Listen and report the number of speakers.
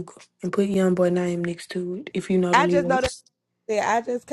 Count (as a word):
two